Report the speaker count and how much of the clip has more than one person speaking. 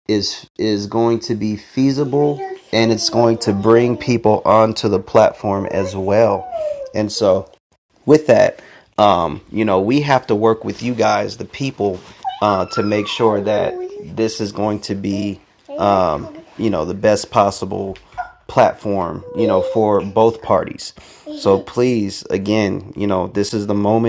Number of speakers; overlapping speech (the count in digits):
1, no overlap